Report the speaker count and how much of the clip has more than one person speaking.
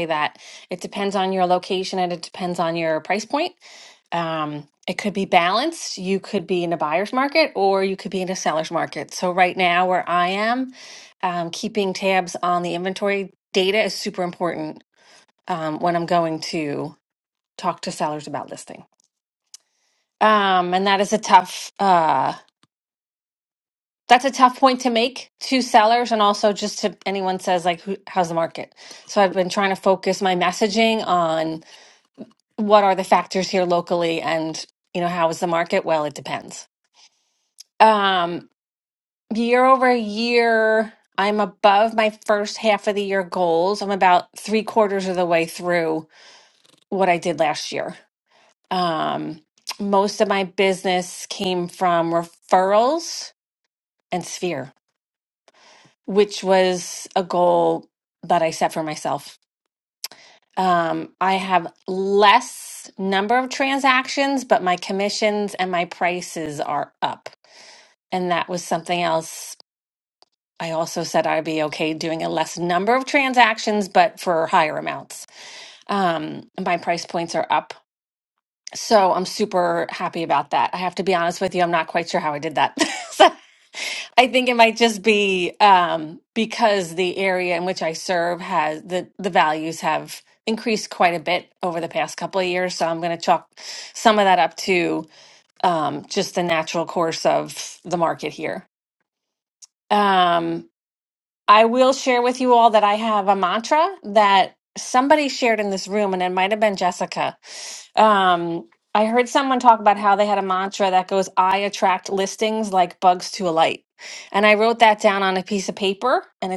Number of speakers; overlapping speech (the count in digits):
1, no overlap